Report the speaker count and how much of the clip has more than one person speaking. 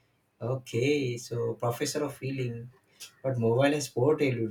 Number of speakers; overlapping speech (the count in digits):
1, no overlap